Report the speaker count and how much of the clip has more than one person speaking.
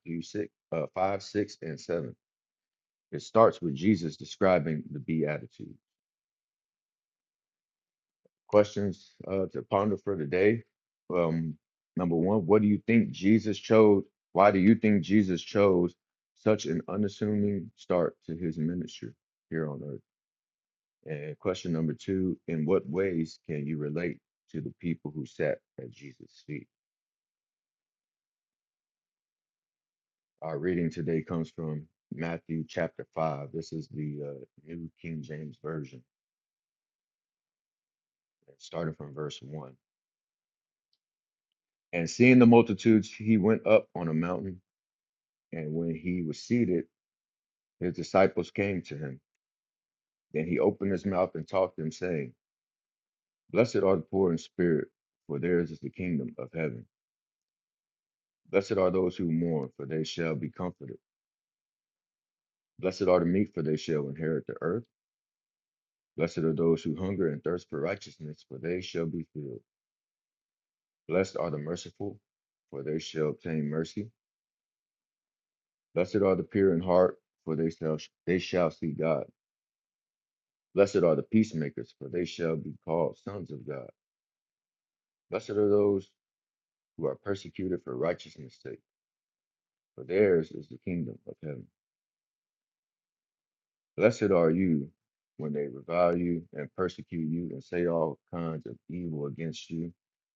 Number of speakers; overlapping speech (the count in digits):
1, no overlap